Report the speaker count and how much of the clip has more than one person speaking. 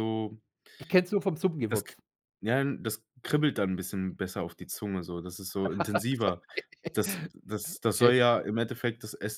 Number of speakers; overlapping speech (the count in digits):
2, about 3%